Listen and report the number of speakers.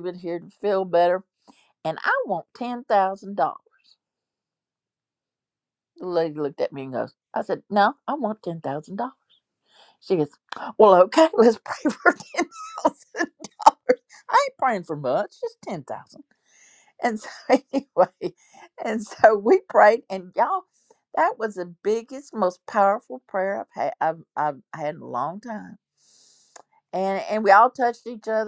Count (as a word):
one